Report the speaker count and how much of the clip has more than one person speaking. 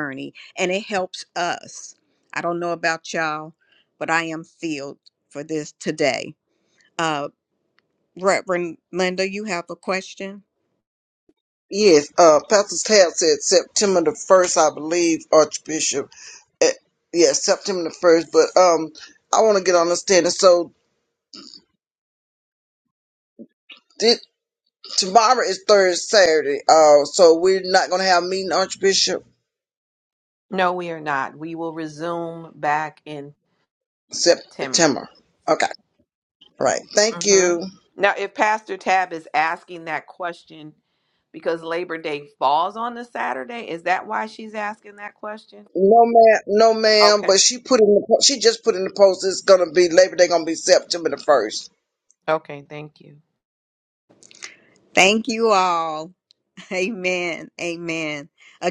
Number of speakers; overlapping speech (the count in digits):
3, about 2%